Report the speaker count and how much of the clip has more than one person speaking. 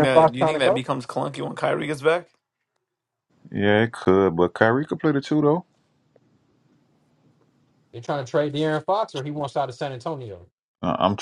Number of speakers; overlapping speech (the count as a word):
three, about 7%